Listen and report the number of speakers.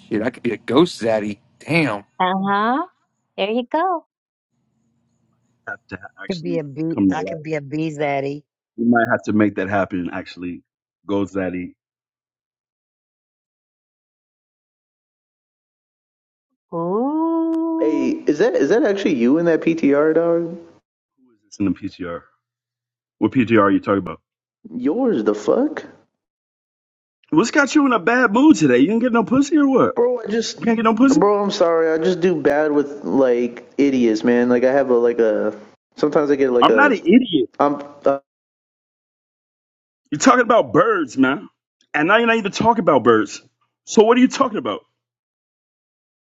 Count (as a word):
five